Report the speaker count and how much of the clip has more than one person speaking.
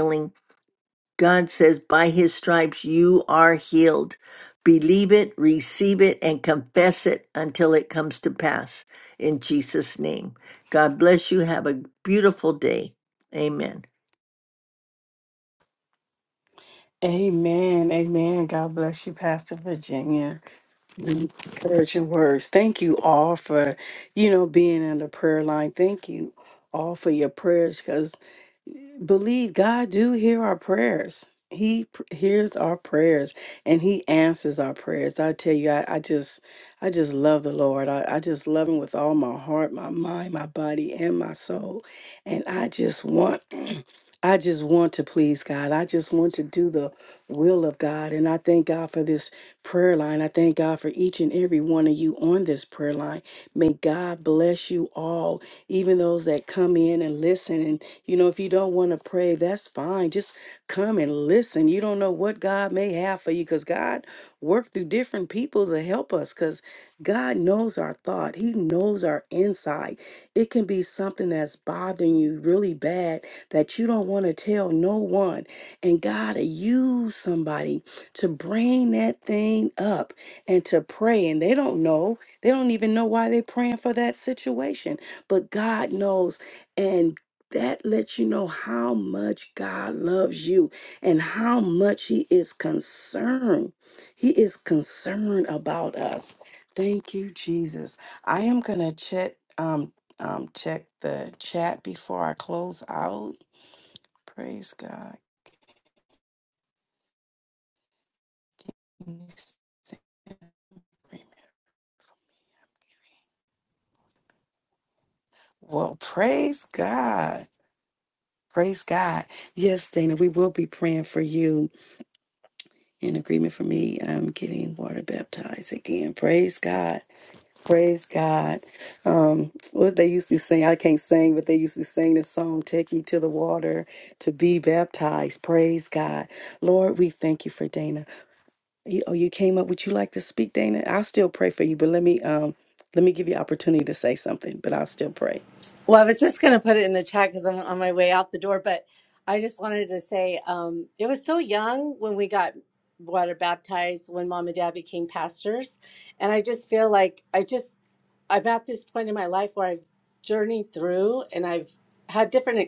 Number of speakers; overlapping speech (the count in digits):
3, no overlap